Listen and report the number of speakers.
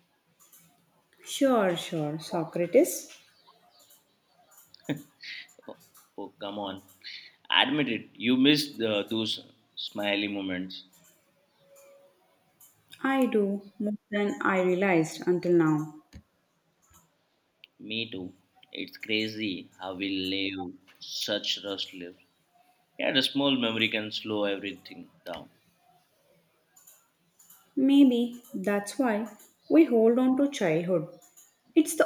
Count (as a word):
two